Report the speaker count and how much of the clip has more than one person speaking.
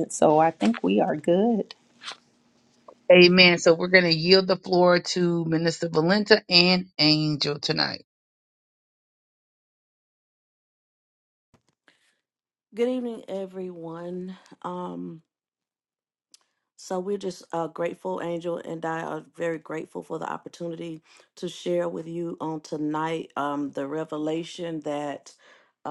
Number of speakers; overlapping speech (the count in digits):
3, no overlap